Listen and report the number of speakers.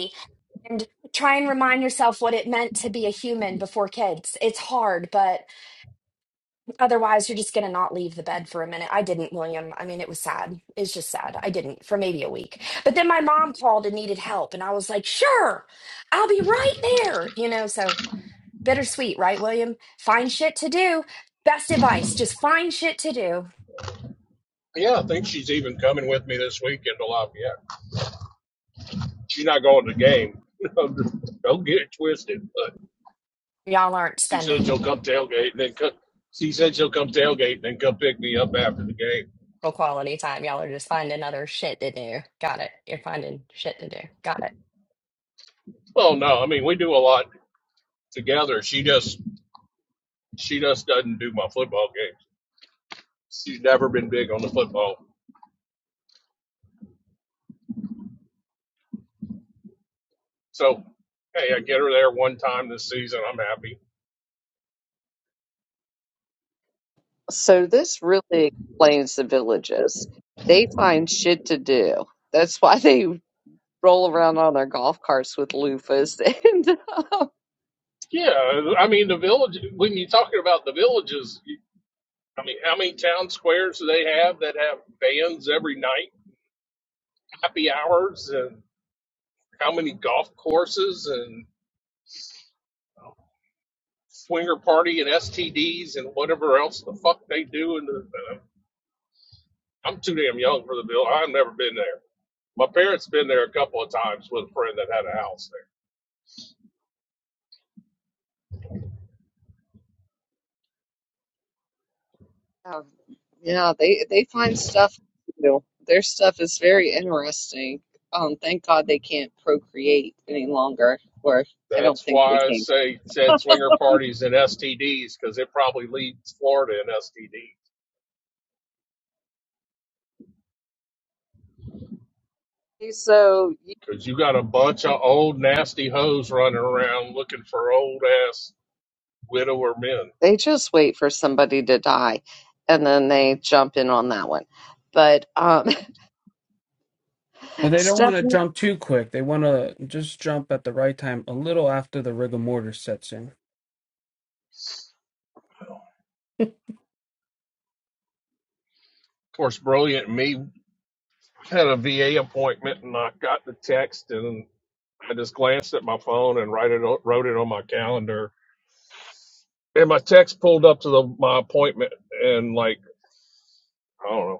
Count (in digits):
4